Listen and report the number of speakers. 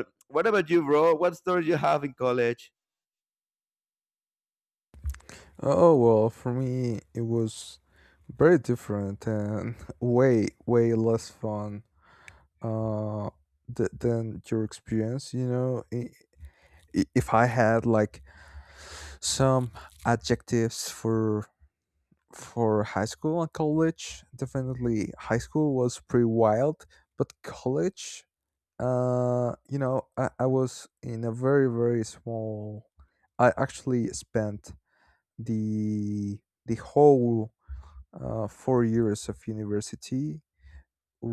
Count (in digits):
2